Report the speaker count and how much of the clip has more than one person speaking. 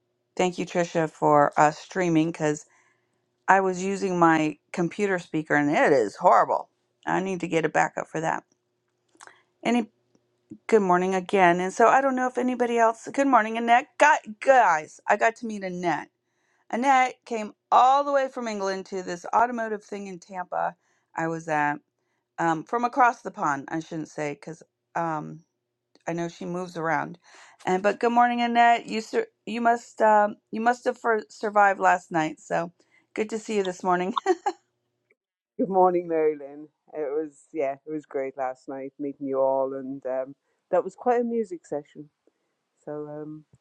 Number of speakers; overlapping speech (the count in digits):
2, no overlap